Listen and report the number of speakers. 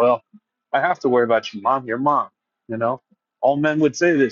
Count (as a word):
one